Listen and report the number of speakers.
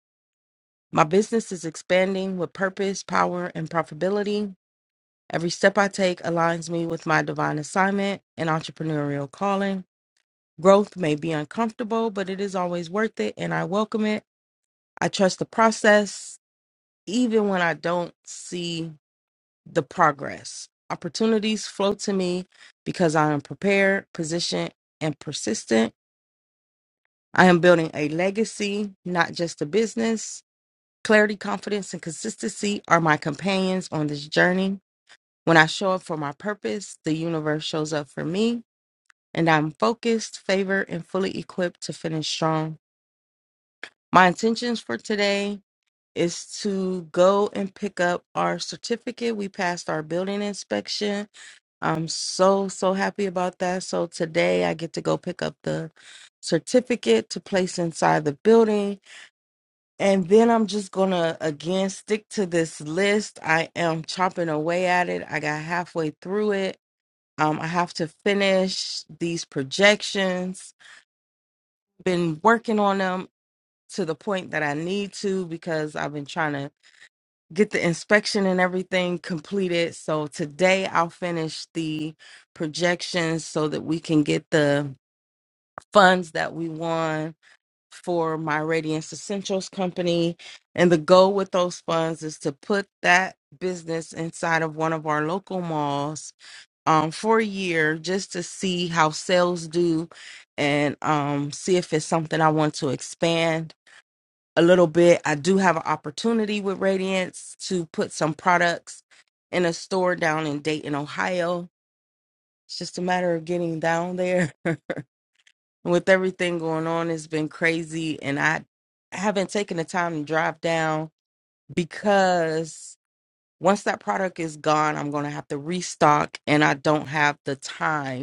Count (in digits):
1